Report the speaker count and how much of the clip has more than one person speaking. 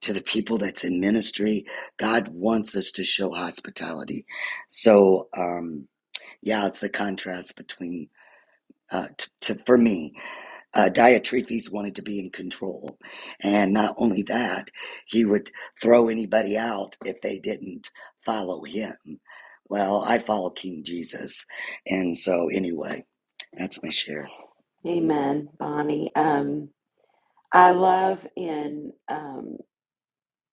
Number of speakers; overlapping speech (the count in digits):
2, no overlap